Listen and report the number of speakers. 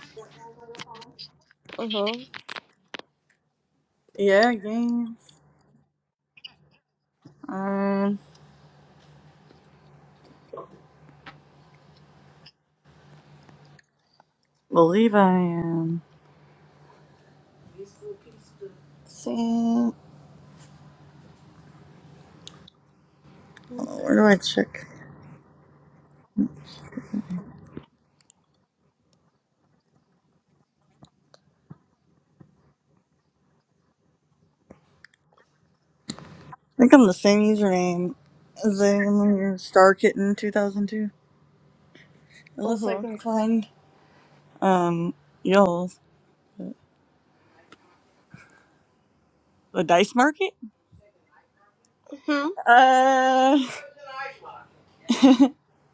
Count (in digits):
2